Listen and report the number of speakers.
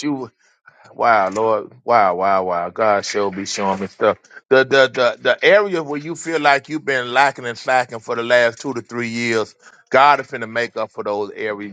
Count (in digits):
1